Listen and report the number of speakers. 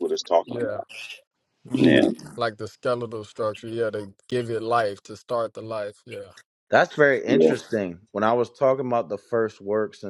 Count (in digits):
3